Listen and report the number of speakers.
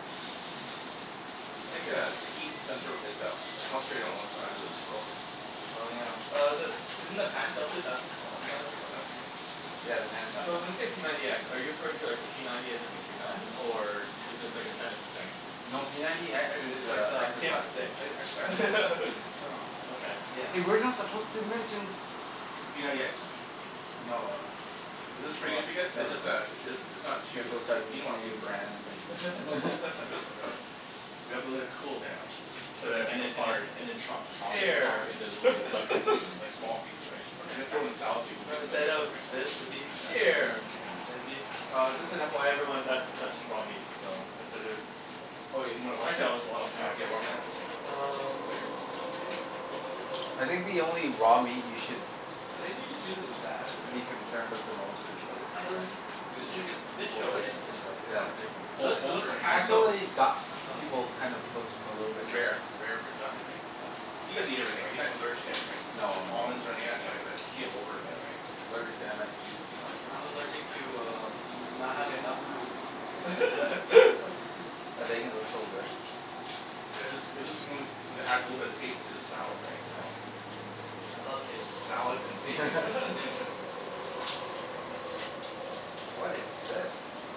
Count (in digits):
4